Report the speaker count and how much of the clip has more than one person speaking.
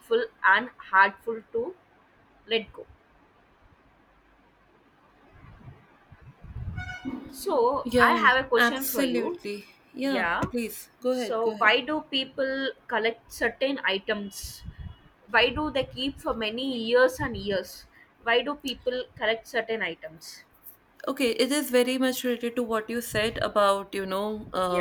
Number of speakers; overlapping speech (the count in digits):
2, about 9%